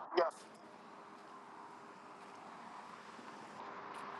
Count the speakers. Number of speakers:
zero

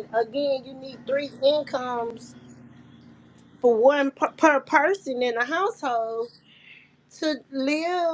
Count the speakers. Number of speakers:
one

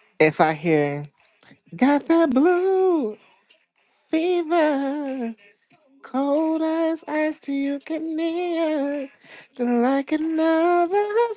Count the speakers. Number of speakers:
one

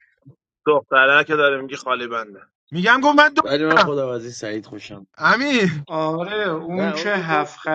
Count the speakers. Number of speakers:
four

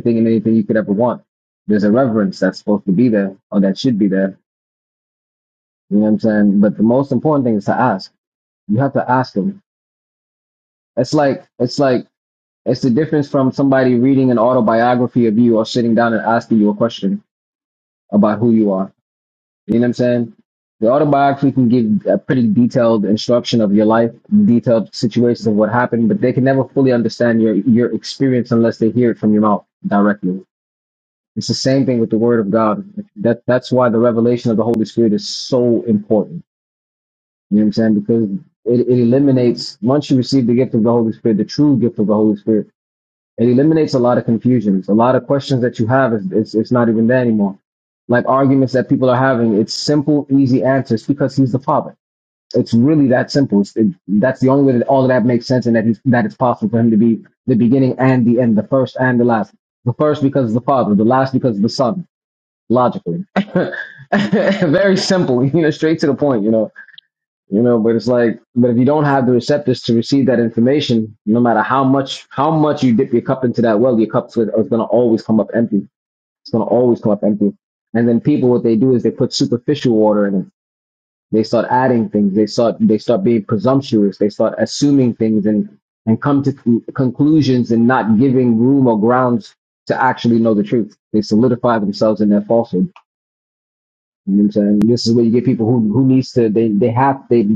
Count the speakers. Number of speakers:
one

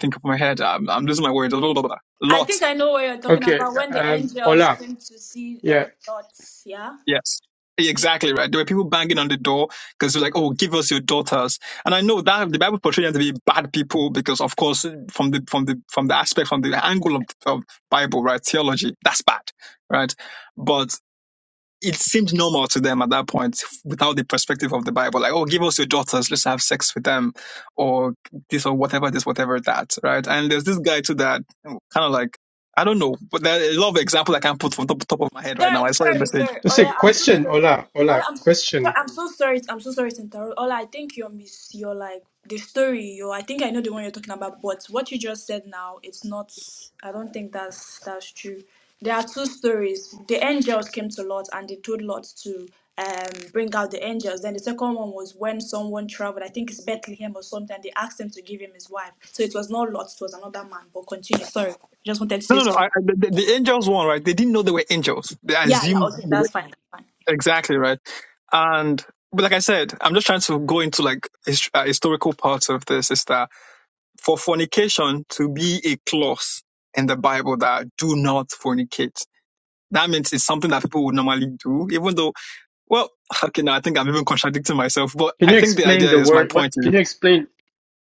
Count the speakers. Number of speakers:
three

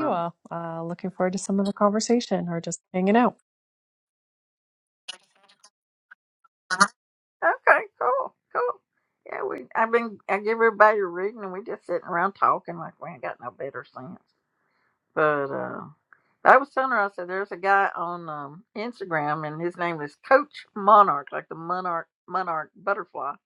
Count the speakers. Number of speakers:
two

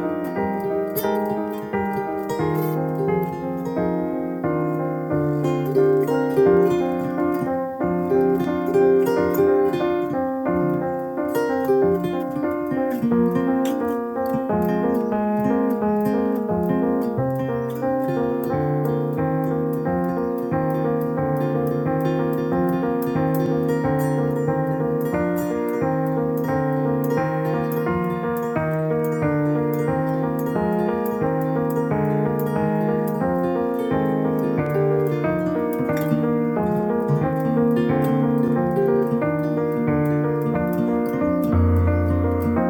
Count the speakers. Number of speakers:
zero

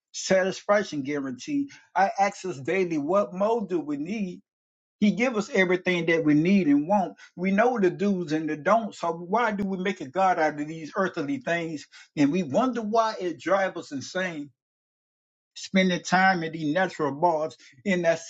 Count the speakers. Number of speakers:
one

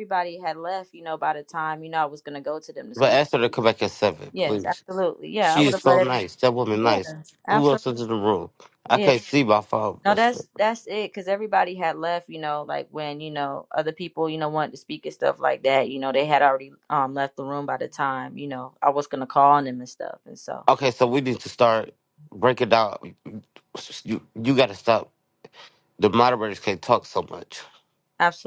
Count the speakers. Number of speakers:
two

